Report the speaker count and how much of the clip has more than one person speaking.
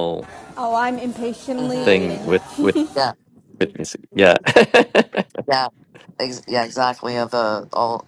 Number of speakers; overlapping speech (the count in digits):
3, about 9%